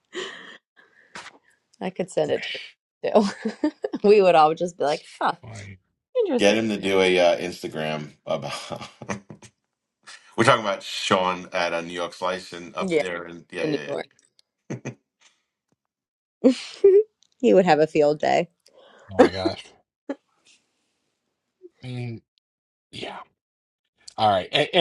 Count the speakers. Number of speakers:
3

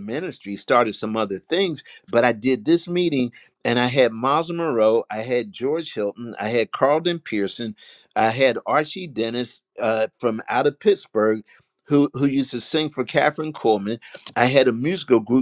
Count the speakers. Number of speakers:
1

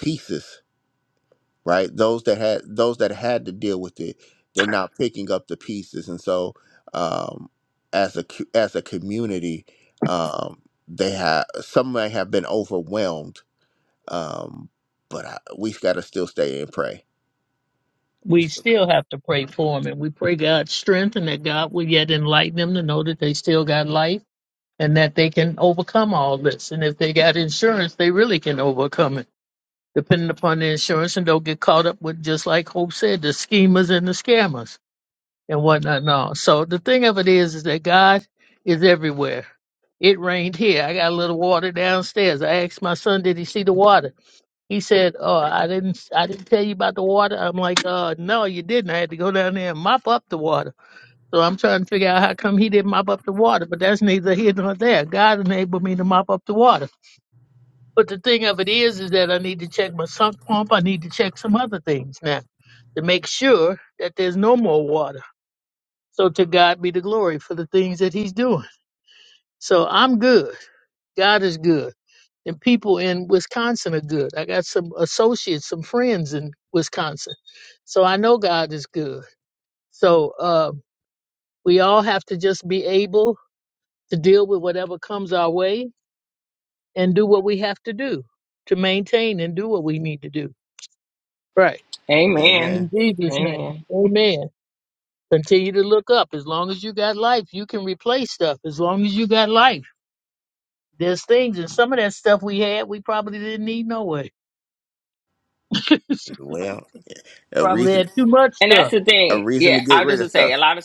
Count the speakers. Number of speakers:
3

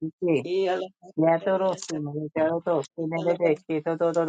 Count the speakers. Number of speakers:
2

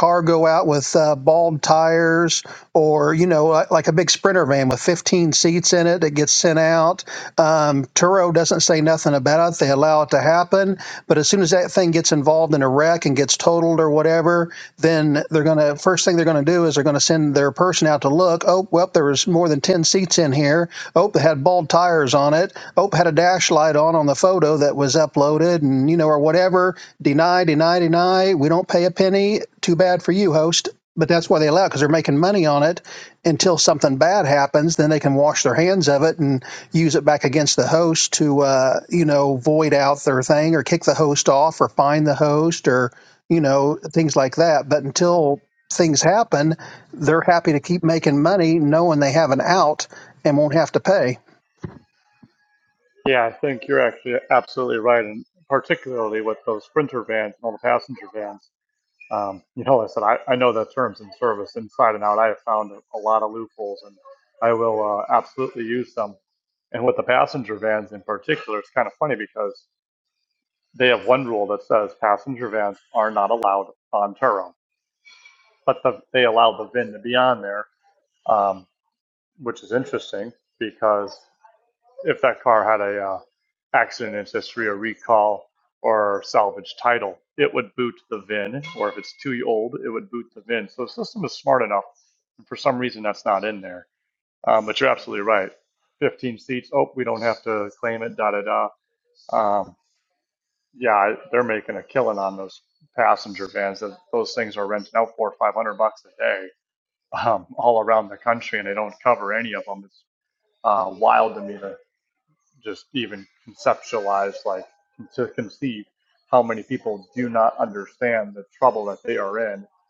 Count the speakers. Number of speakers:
2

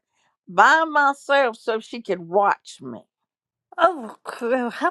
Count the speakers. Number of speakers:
2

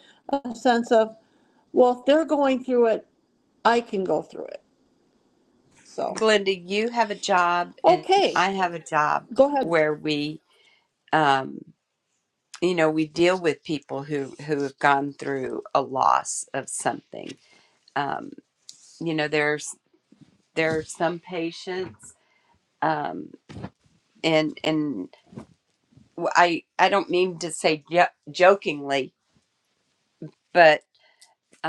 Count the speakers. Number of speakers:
2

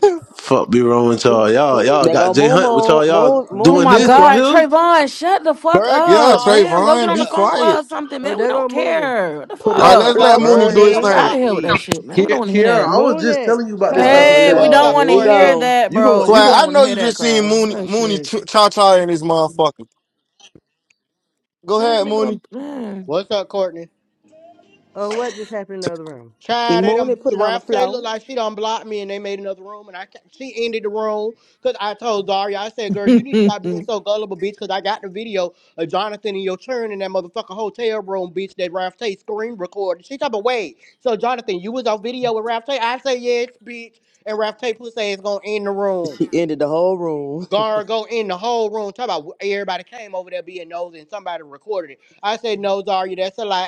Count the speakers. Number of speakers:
6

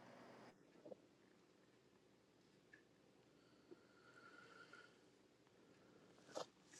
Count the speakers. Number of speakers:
0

